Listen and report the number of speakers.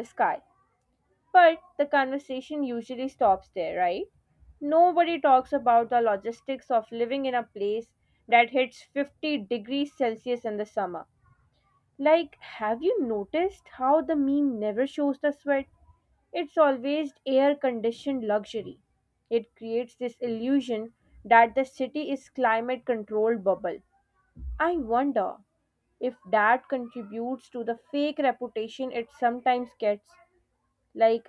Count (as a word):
one